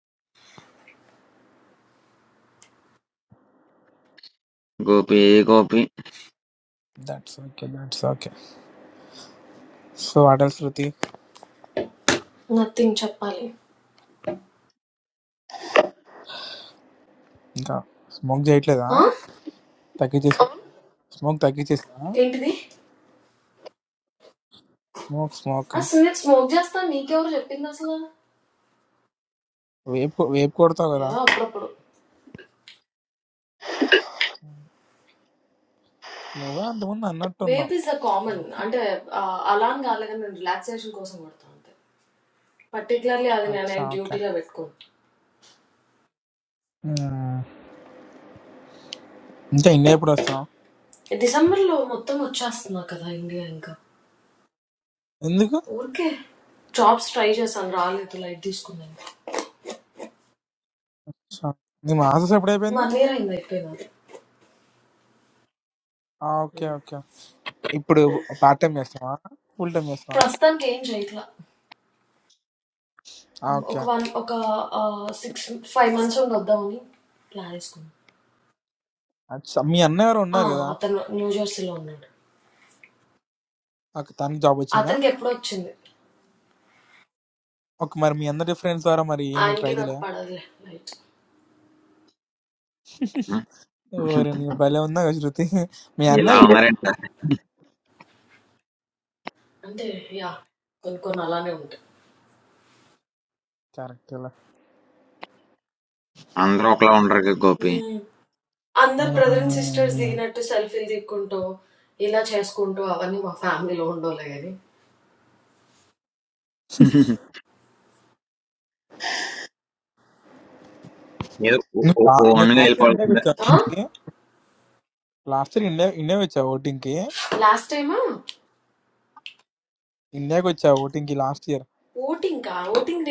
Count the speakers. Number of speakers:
3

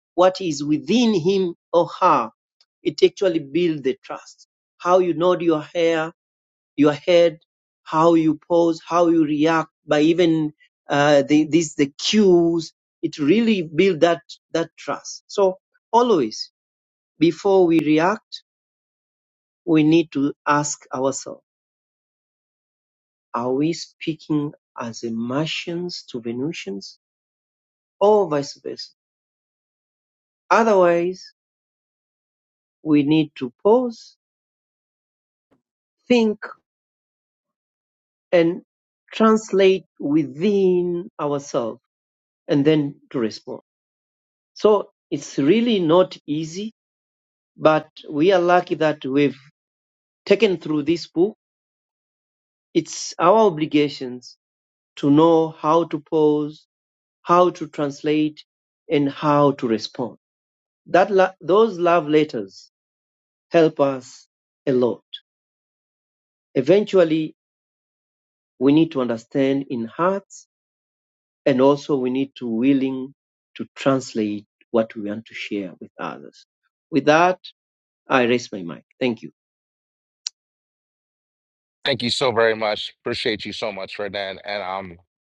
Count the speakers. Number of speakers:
2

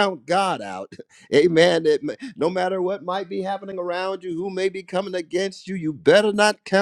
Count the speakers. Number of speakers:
1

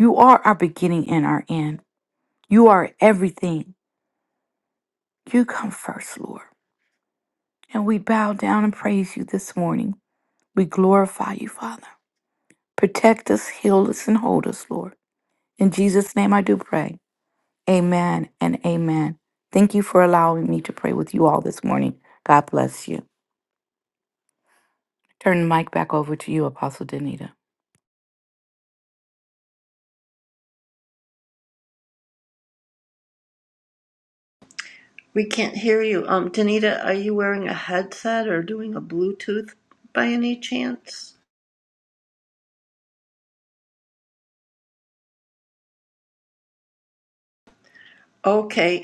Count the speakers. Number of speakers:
2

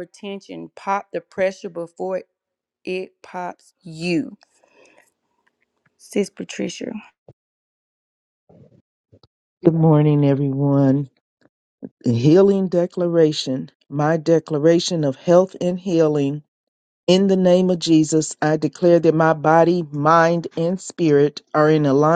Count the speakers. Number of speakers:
2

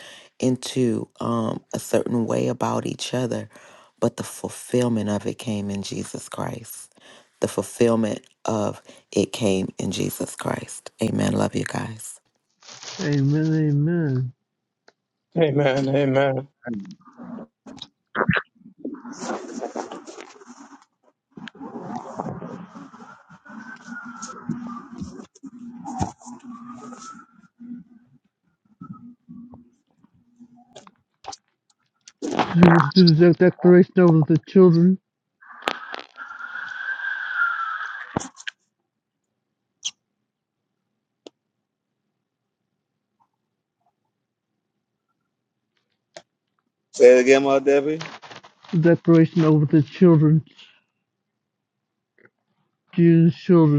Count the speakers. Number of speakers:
4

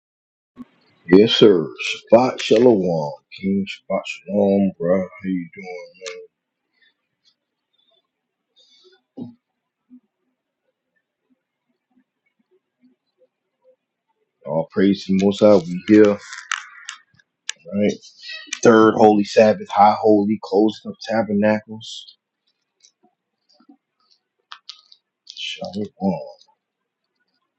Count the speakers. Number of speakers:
1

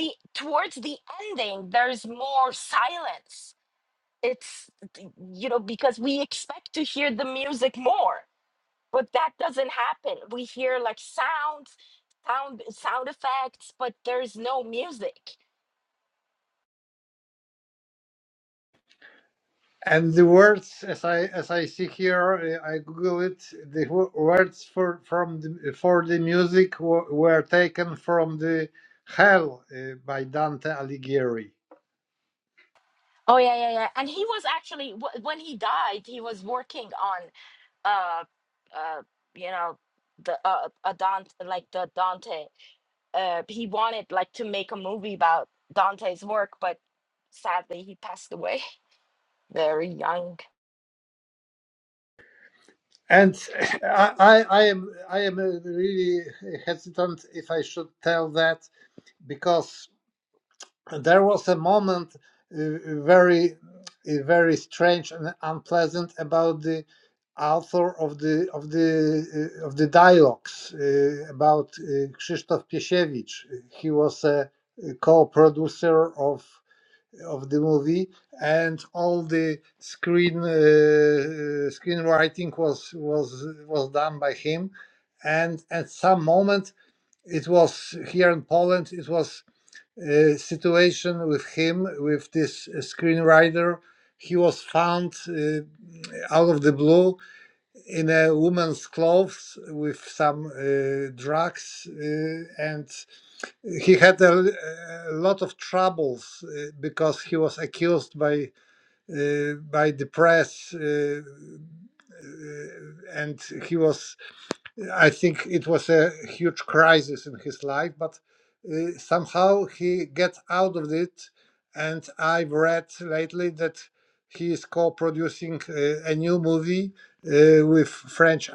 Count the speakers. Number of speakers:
2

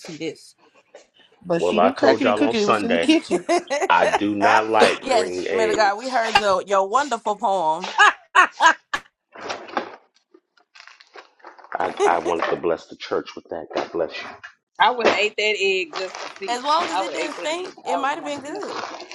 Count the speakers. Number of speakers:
4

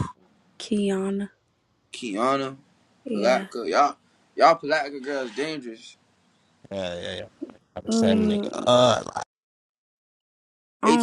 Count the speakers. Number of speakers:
3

